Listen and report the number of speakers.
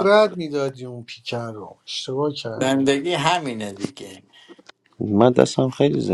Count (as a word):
three